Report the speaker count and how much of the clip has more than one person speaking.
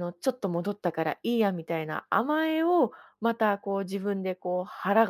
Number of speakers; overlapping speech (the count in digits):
1, no overlap